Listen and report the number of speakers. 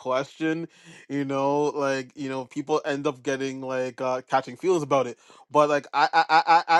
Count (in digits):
1